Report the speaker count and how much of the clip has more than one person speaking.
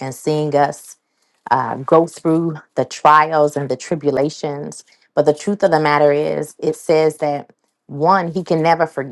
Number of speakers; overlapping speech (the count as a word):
one, no overlap